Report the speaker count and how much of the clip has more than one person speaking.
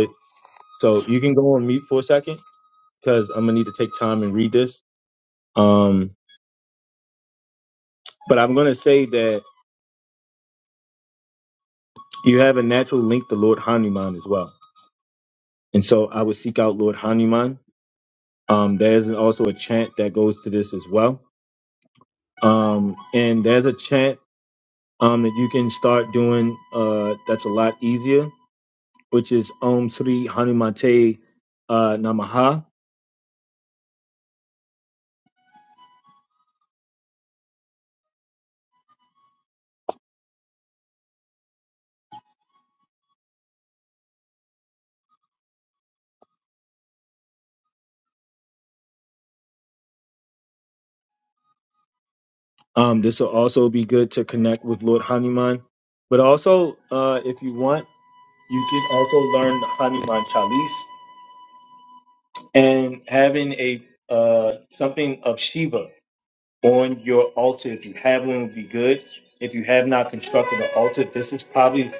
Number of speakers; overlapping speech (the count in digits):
1, no overlap